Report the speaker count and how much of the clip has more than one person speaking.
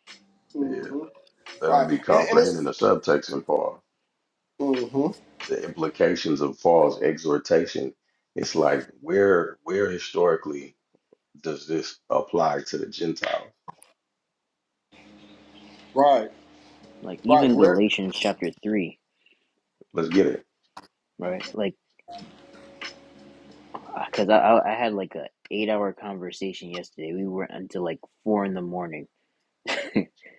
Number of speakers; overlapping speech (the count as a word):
three, about 6%